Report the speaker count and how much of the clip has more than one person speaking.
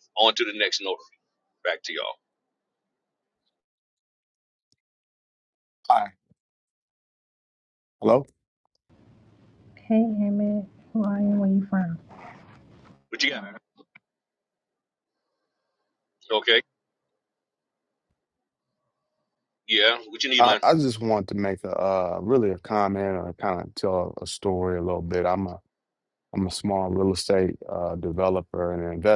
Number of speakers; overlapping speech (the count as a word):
three, about 1%